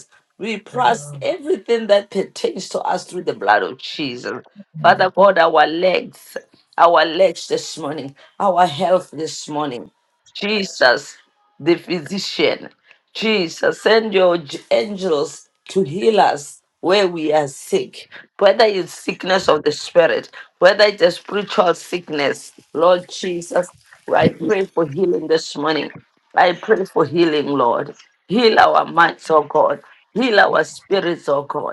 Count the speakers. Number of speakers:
one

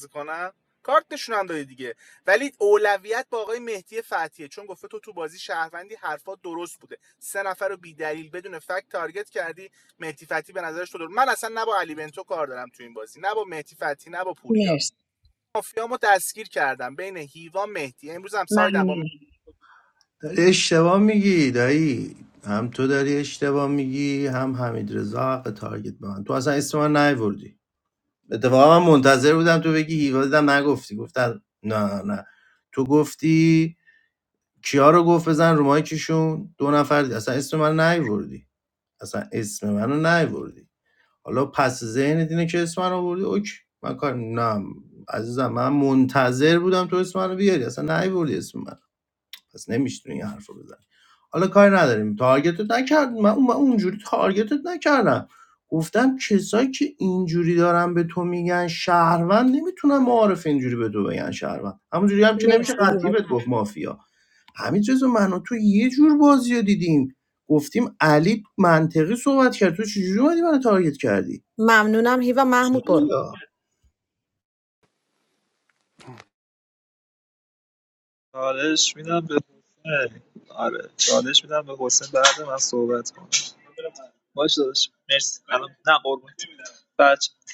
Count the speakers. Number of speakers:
four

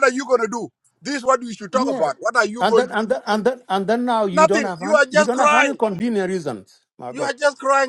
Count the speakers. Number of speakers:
two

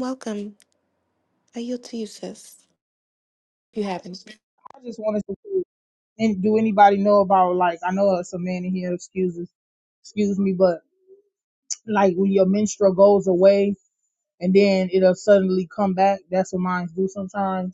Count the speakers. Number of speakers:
two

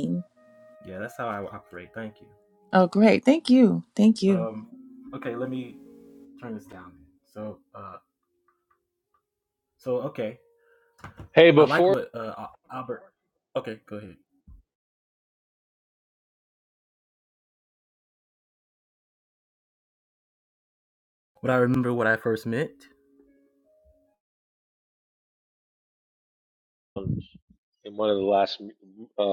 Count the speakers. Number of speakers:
three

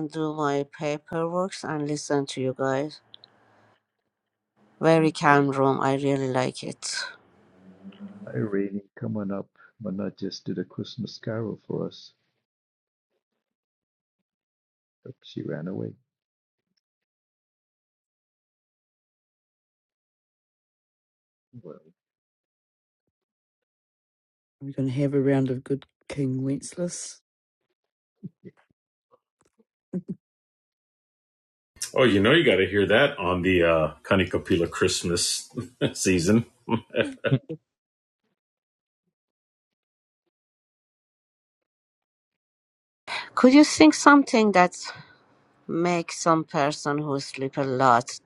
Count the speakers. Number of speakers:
four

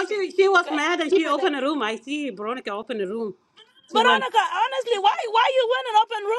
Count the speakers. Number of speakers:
two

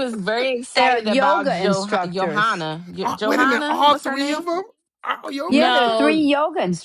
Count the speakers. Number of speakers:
three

